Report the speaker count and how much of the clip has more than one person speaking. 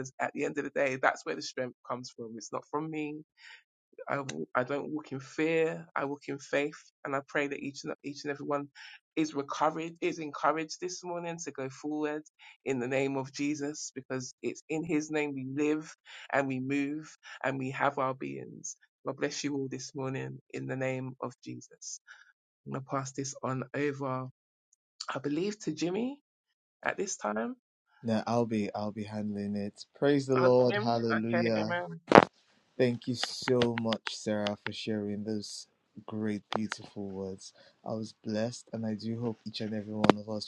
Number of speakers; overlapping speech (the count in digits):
2, about 3%